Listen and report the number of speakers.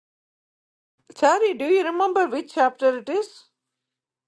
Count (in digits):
1